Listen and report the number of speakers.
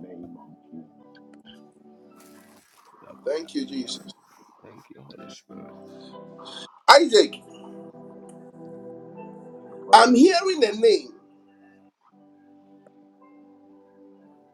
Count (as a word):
three